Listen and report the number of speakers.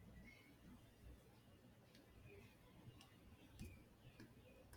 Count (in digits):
0